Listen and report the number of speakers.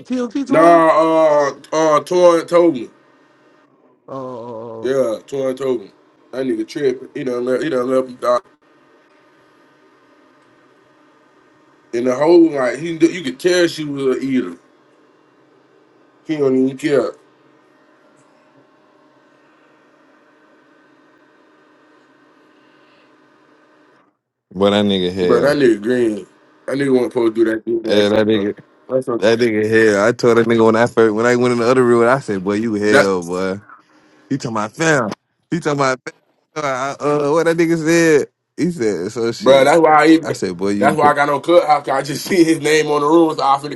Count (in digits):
3